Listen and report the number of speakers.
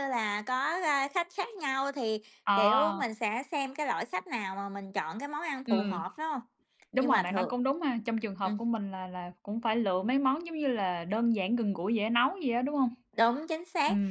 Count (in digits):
2